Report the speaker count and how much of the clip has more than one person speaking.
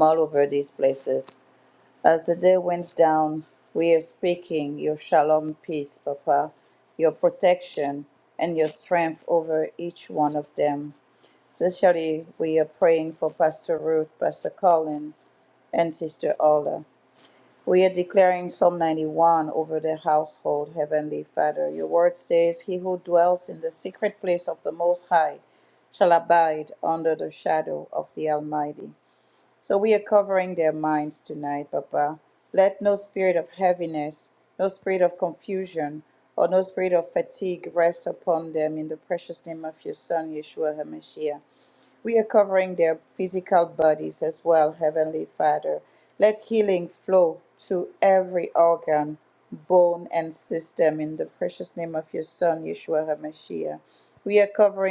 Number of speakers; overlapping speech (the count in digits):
1, no overlap